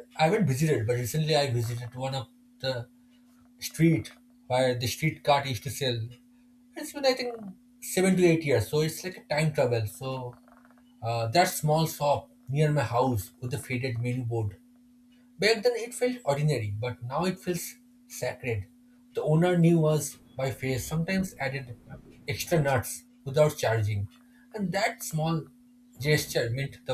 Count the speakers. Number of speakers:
one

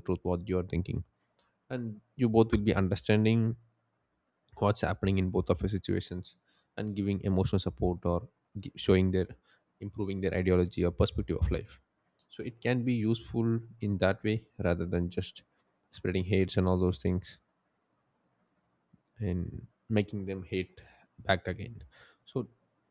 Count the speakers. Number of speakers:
one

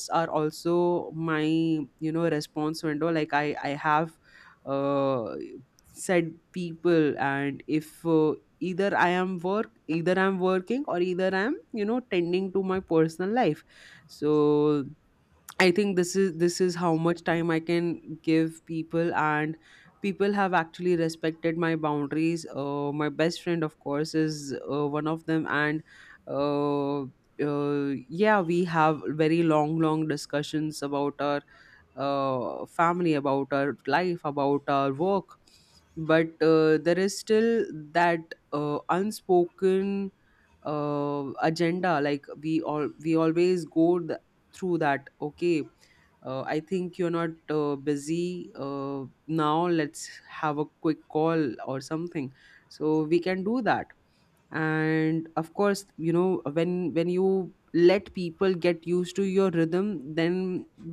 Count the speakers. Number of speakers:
one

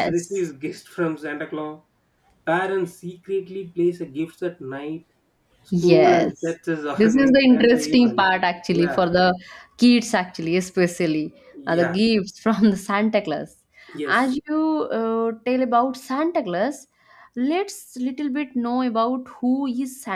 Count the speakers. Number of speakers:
two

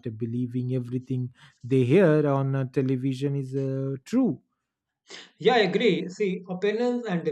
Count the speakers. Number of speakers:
two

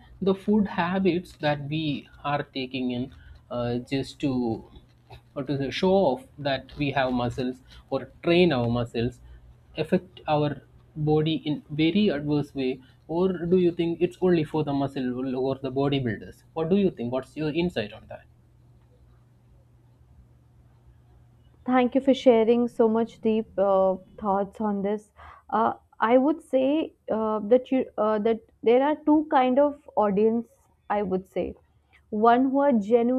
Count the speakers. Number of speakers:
two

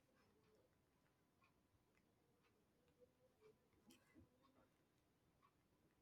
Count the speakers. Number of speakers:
zero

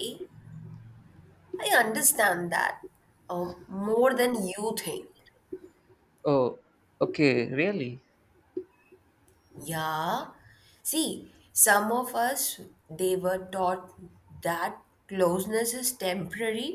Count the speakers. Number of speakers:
two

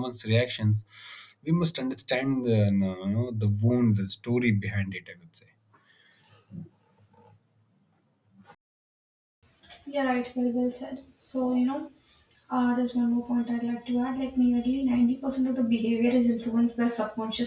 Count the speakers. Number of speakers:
two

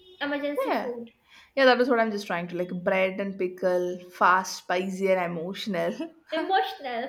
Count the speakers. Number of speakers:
two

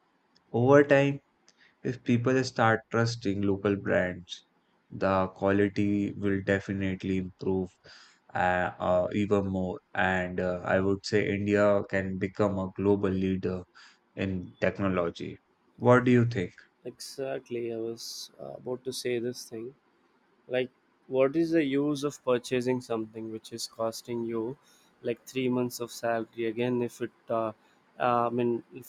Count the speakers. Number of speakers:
two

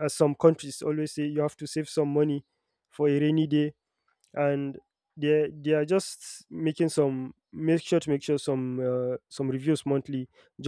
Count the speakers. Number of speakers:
one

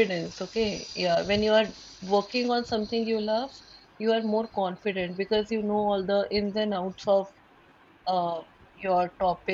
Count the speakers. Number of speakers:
one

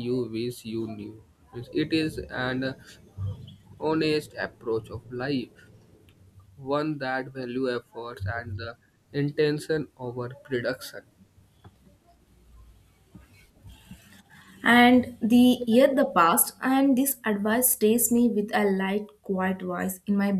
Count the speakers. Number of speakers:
two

